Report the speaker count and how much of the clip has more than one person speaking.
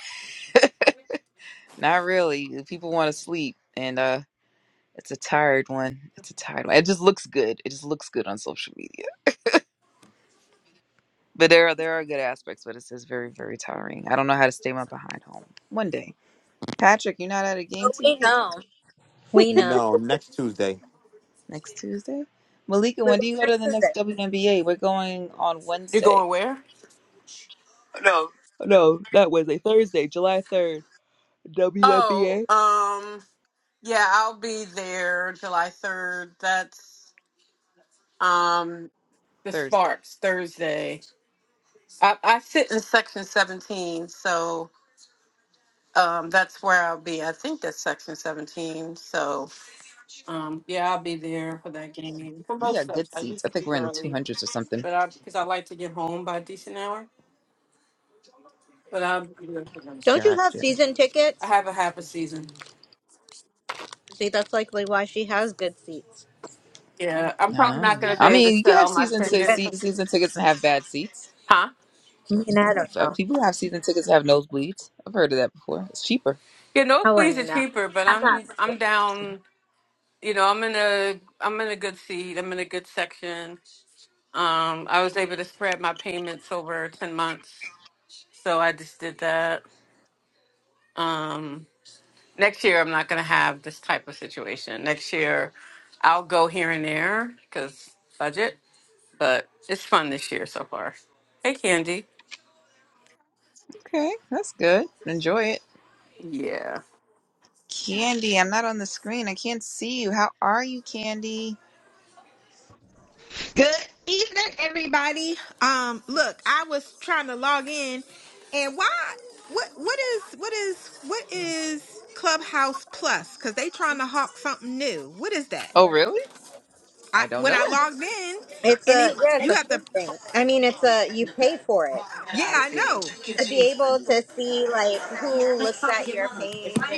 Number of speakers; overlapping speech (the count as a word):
five, about 7%